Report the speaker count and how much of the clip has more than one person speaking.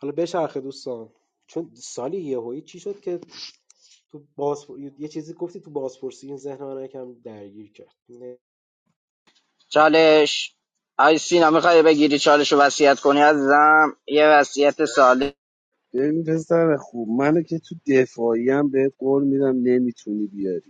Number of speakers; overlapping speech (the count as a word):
three, no overlap